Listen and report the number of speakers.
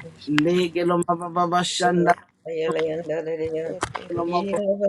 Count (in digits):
3